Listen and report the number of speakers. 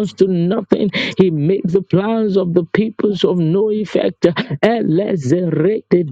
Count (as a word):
one